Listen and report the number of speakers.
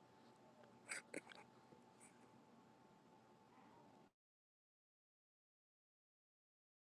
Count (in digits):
0